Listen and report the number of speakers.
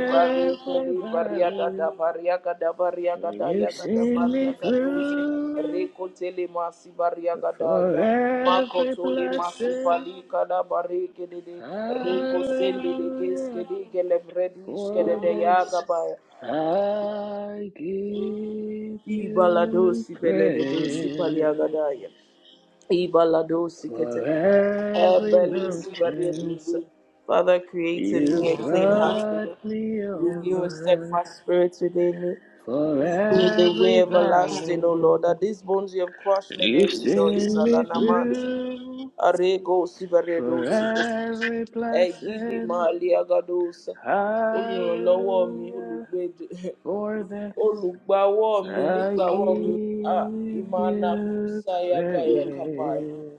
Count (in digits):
2